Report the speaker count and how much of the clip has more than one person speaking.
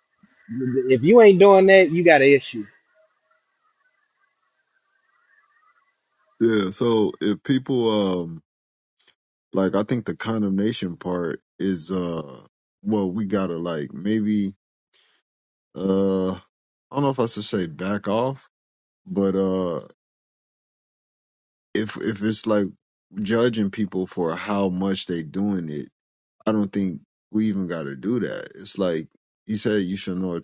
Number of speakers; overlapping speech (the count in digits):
2, no overlap